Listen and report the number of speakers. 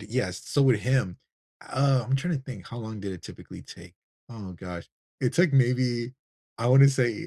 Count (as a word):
one